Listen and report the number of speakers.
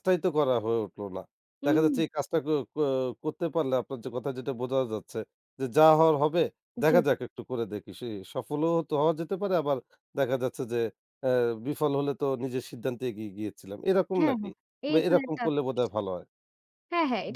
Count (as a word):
two